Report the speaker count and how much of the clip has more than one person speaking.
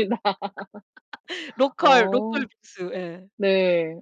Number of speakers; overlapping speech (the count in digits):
2, about 15%